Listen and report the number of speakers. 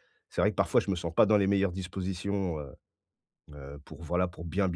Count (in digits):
1